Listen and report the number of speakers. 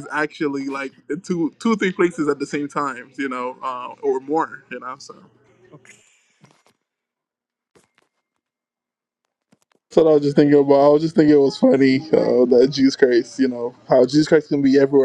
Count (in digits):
1